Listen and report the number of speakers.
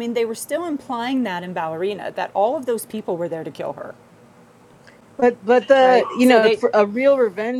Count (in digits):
2